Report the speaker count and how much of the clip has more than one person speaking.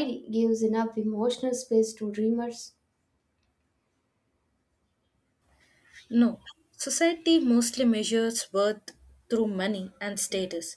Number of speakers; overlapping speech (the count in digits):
2, no overlap